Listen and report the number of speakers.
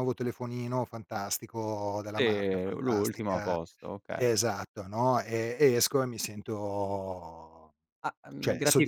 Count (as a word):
two